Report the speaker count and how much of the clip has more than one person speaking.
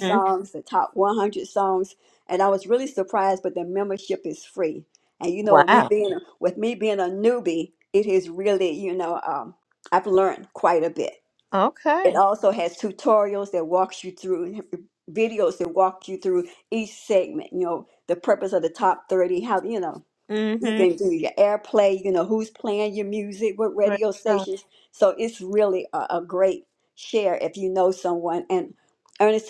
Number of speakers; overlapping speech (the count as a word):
two, about 6%